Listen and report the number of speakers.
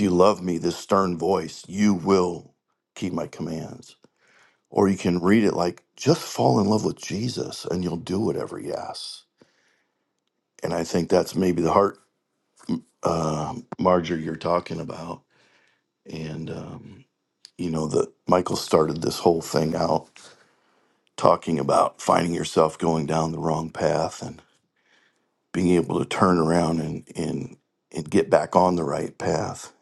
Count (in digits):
1